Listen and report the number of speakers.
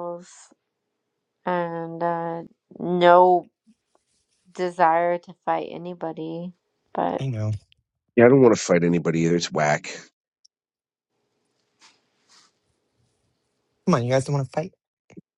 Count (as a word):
three